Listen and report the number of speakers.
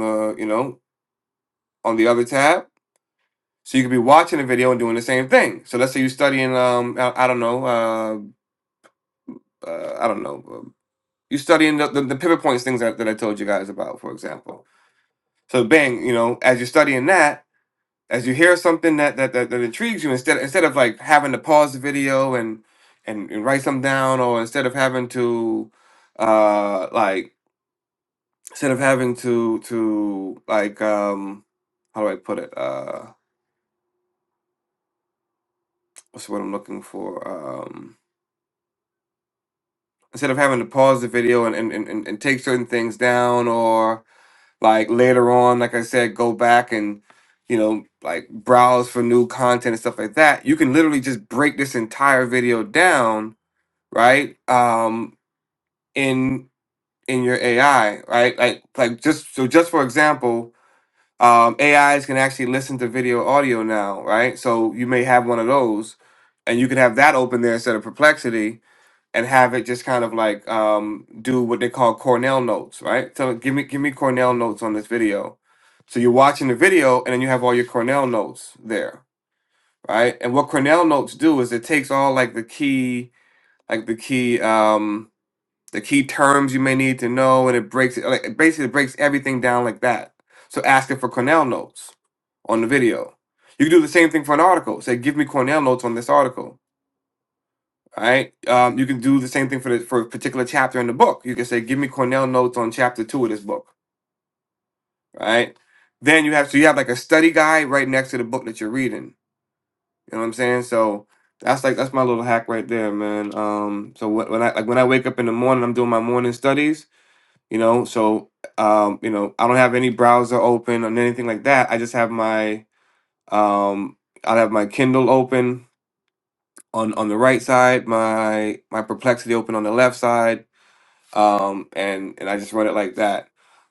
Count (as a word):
one